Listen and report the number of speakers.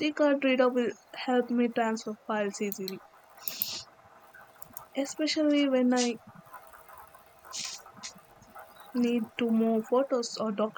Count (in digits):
1